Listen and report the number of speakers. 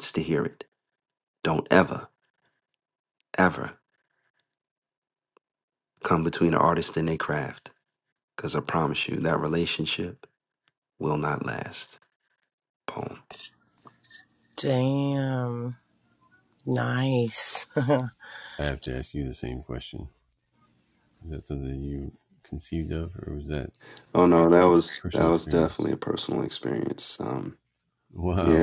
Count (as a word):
three